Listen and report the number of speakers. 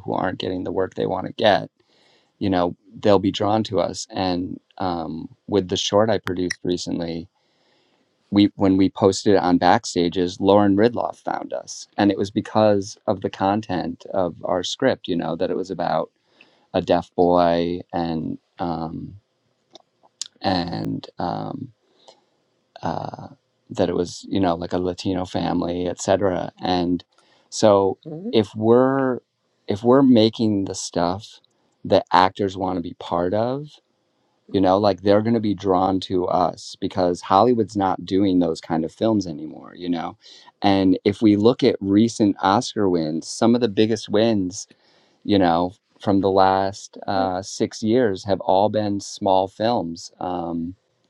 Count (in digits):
1